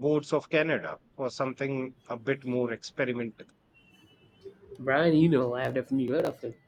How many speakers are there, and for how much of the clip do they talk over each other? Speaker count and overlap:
two, no overlap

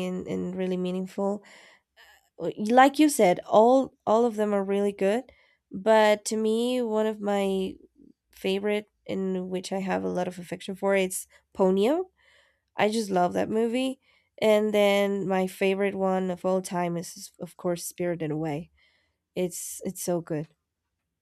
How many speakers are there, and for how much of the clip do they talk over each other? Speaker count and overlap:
one, no overlap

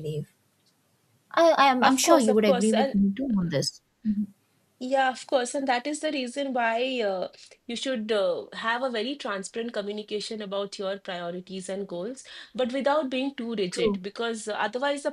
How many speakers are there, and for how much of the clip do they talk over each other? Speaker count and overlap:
two, about 9%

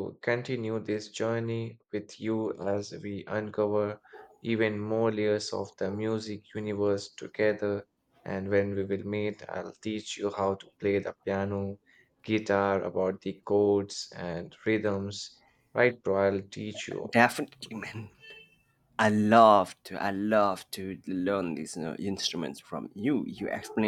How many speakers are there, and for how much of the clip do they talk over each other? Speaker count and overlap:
two, under 1%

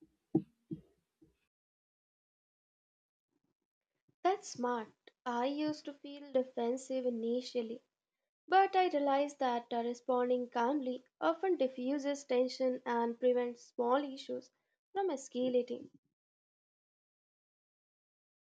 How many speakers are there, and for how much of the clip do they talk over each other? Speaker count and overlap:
one, no overlap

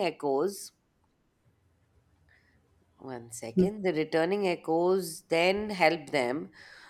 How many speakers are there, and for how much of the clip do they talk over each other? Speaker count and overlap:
one, no overlap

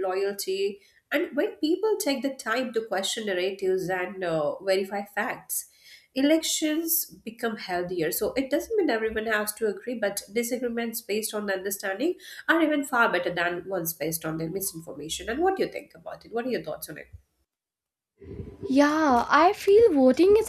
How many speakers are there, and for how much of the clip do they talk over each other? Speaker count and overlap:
two, no overlap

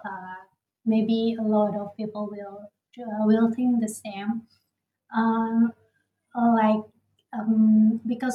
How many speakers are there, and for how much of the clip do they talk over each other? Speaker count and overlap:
one, no overlap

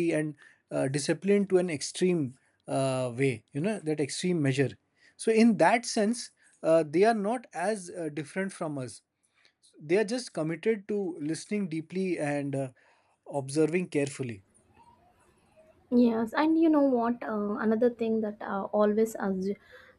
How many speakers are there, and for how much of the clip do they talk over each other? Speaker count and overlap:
two, no overlap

